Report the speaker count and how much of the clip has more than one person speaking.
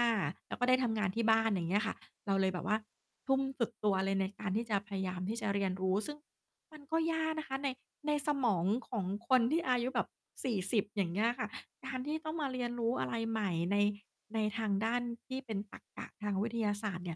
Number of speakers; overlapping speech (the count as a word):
one, no overlap